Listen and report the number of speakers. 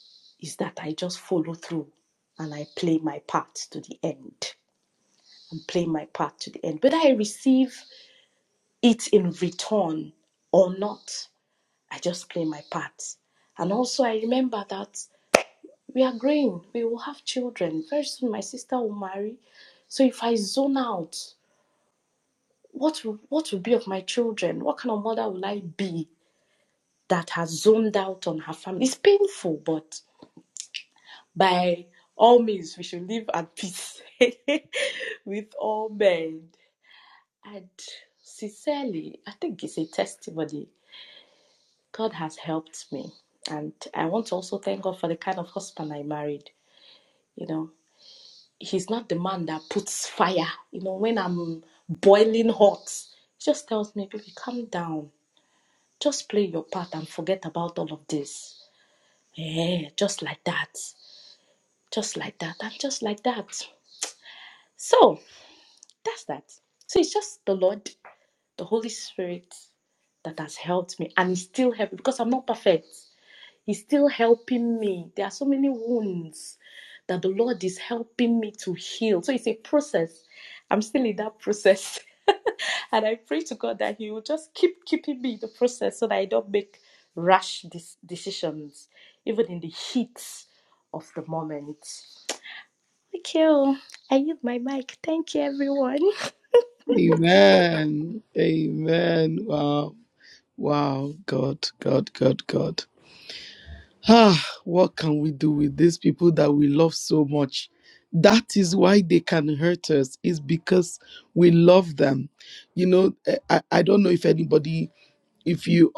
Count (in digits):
2